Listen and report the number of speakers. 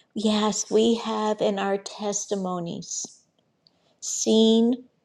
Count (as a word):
one